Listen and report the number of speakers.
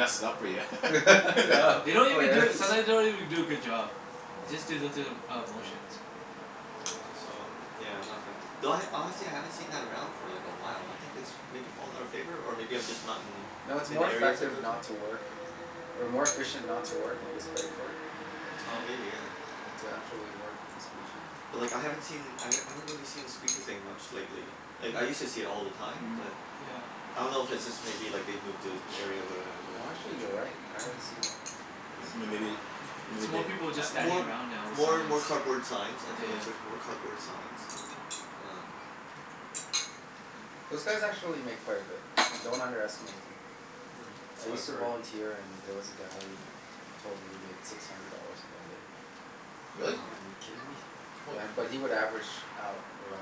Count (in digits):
4